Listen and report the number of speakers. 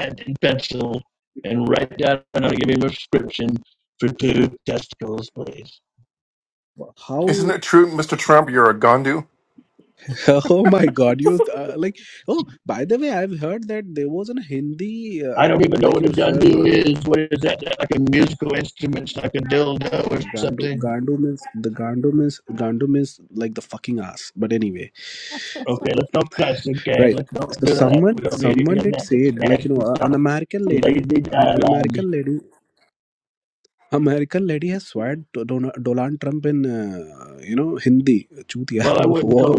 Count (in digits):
3